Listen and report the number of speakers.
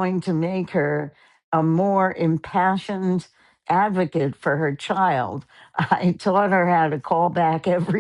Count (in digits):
1